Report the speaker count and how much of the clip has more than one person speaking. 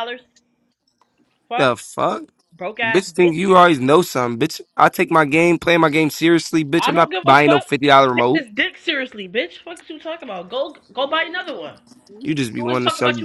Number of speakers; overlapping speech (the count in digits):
2, about 19%